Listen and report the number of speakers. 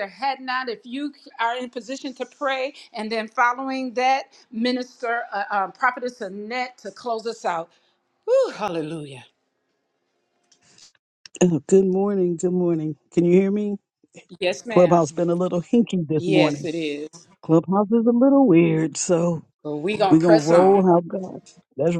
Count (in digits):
2